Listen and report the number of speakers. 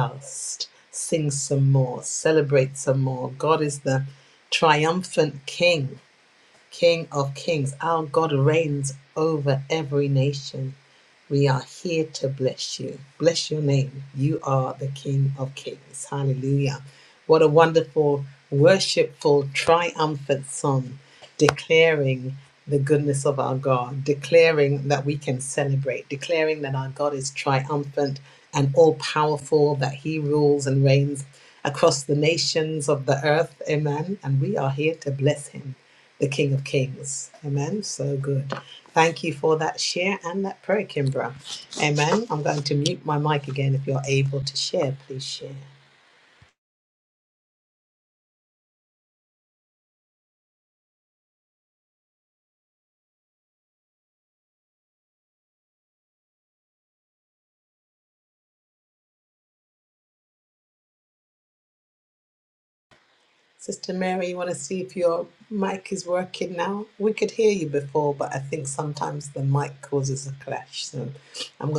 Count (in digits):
1